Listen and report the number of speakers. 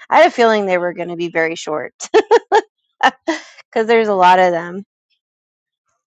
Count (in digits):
1